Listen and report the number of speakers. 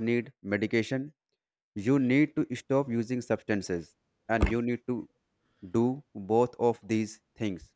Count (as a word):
one